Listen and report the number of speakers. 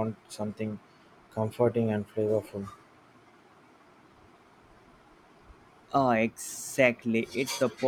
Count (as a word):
two